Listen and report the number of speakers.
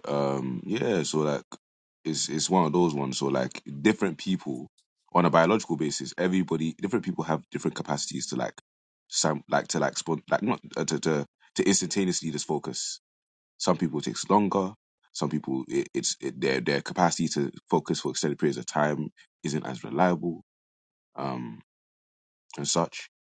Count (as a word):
one